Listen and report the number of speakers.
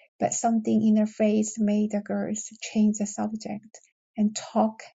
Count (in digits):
1